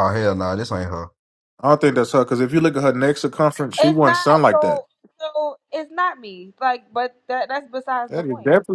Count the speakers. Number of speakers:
three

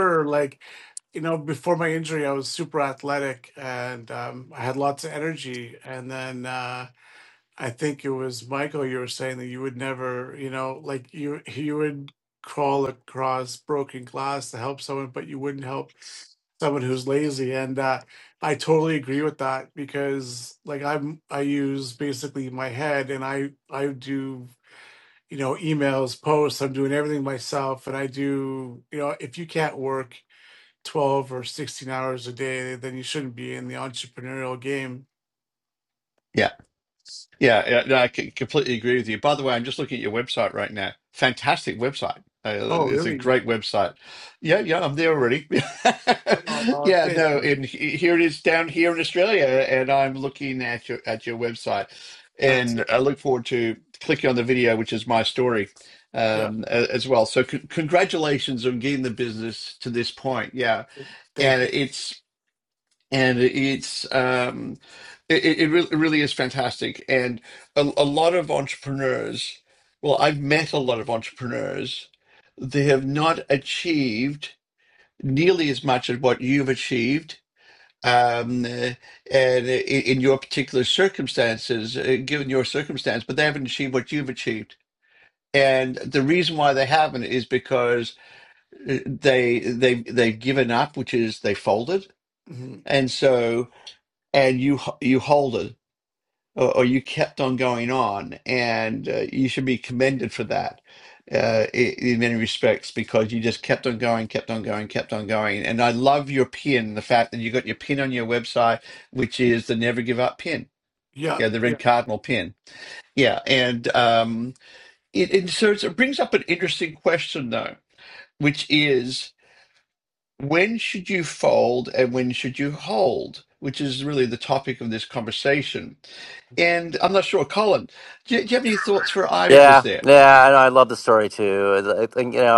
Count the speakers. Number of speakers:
three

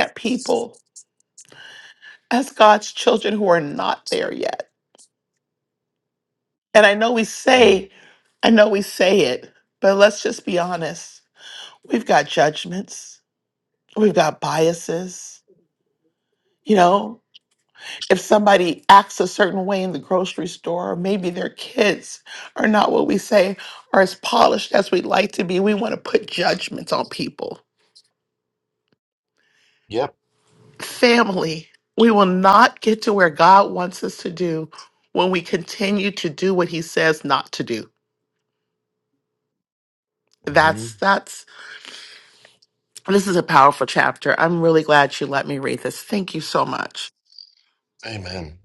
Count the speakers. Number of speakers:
two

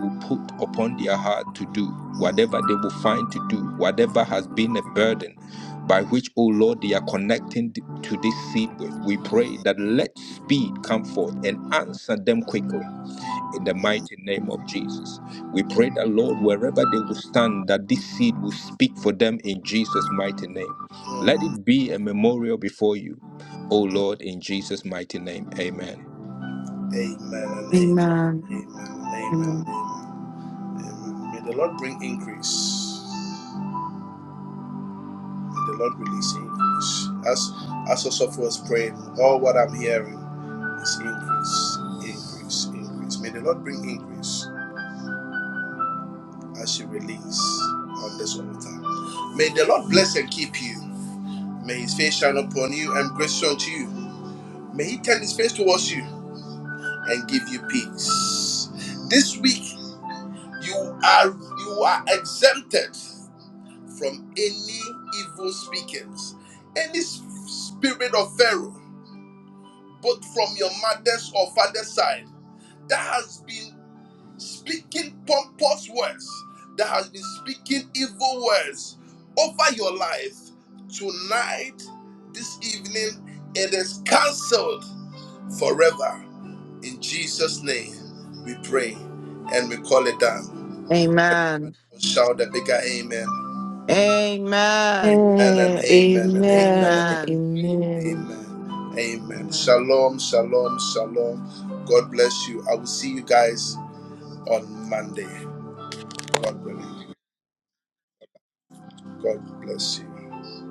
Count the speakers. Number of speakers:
four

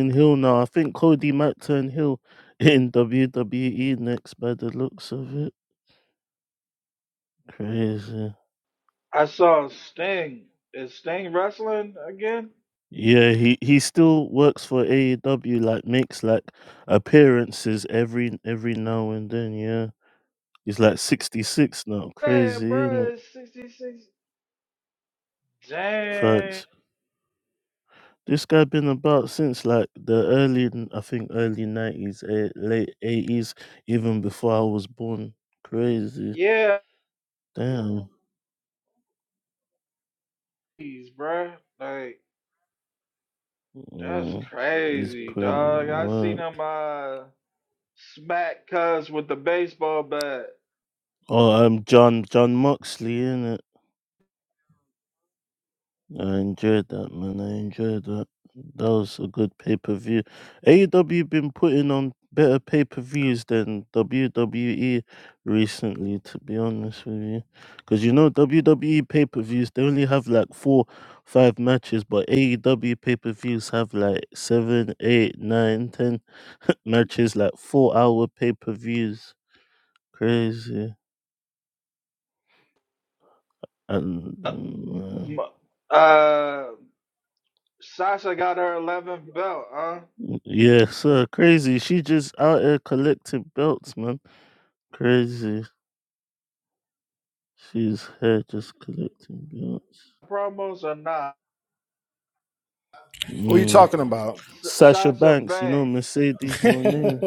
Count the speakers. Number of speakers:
three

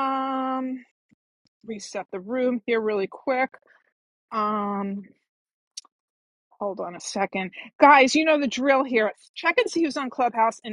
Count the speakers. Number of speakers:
one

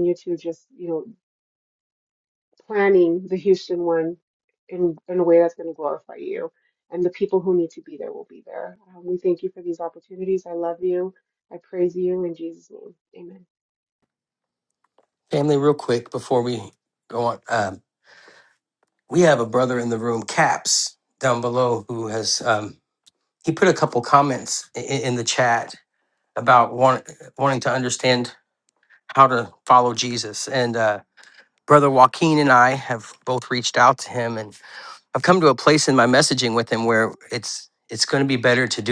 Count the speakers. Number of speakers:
two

